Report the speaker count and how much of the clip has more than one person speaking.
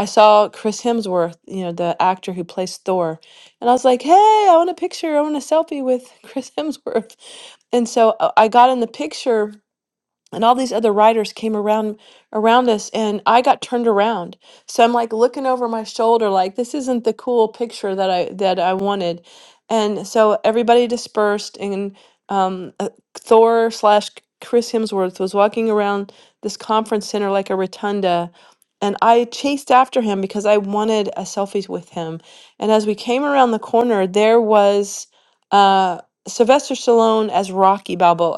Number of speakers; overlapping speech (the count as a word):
one, no overlap